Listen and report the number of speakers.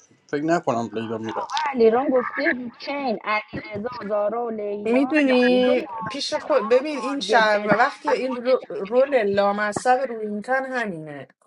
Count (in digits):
3